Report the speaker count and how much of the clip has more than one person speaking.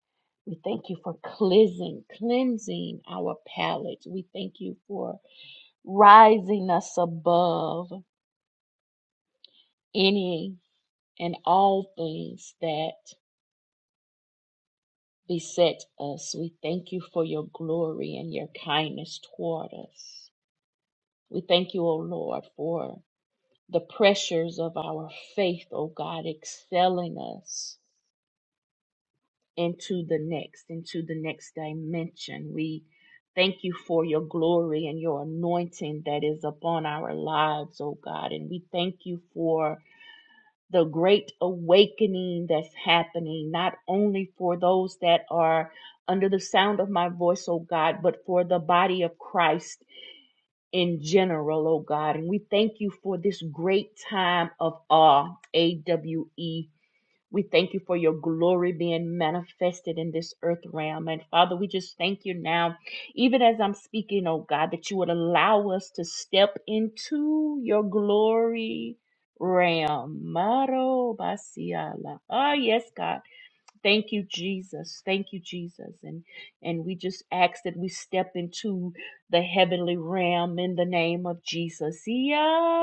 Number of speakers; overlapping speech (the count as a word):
one, no overlap